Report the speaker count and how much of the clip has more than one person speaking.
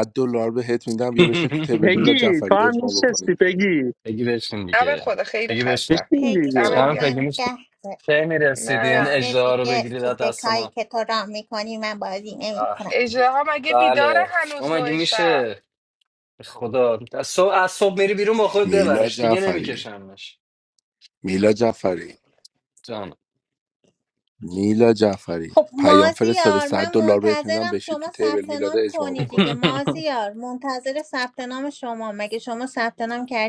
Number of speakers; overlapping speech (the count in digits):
5, about 39%